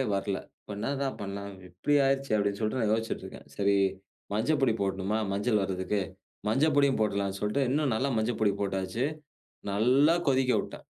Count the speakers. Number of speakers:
1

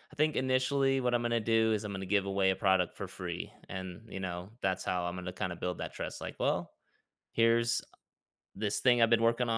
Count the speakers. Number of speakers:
1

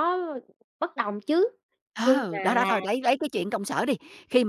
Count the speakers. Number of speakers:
2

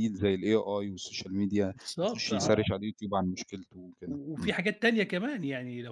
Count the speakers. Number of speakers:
2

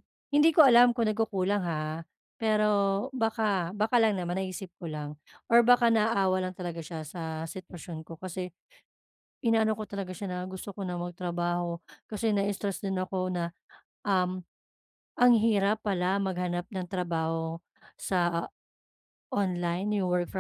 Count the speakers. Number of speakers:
1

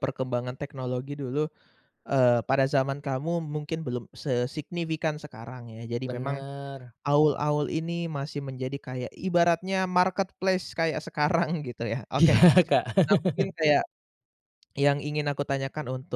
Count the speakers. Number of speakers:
2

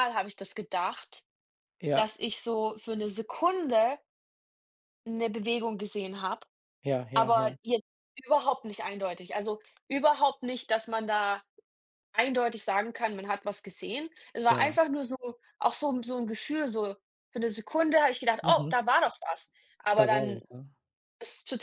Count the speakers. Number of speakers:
2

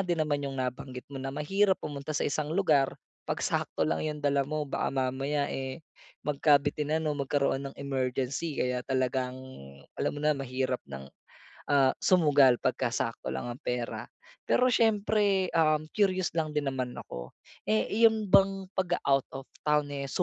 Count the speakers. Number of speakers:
1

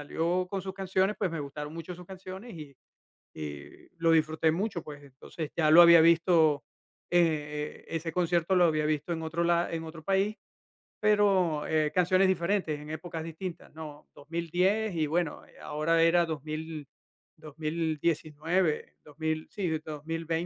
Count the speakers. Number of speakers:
1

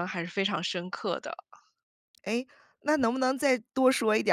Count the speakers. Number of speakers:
2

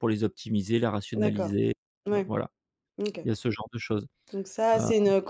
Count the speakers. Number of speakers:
2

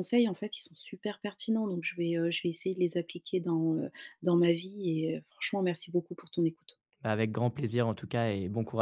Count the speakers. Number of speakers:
2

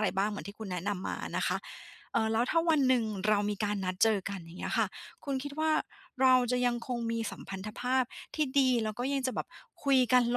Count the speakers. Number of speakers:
1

